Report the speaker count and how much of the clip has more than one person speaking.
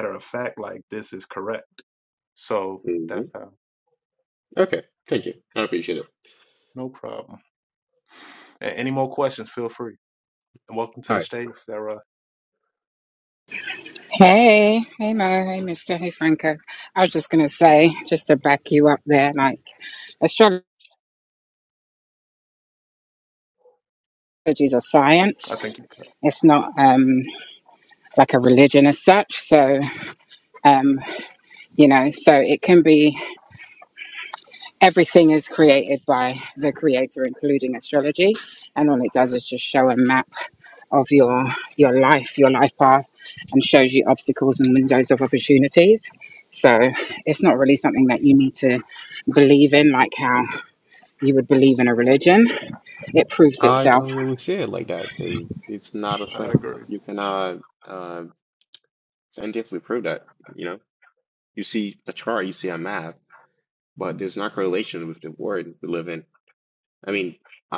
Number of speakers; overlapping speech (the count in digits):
3, about 2%